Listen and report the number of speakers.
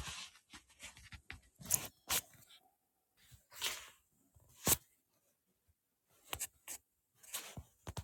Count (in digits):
0